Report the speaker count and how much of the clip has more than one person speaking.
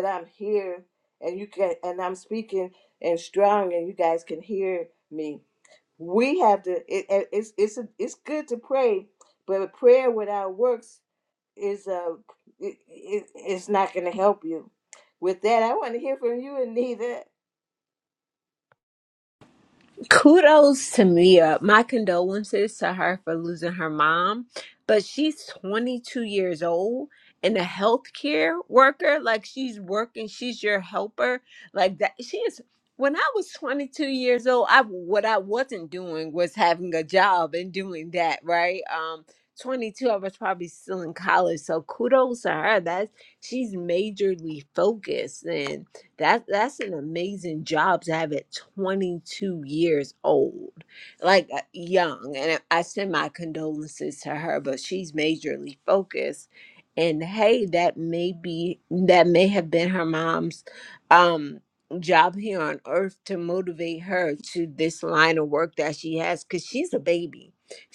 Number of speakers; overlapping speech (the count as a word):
two, no overlap